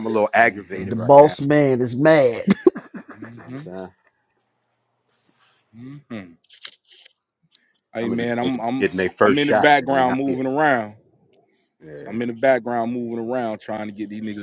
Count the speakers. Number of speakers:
3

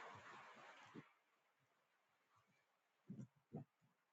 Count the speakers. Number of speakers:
0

